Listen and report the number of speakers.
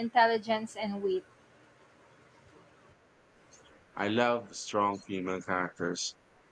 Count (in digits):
2